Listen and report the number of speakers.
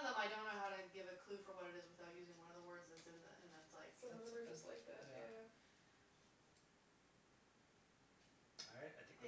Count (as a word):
three